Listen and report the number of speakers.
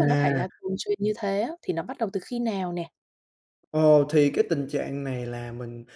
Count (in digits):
2